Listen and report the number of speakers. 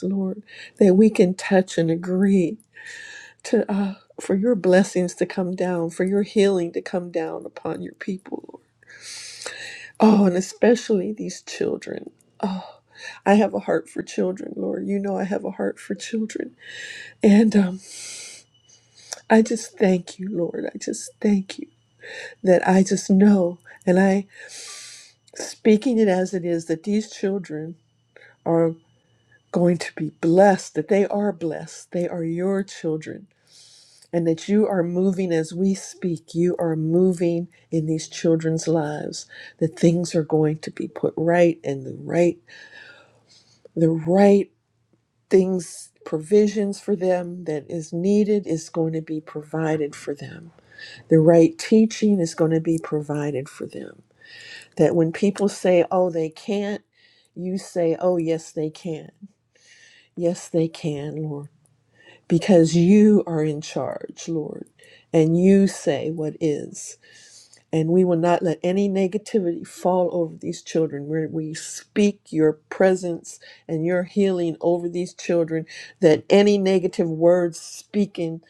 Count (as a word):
one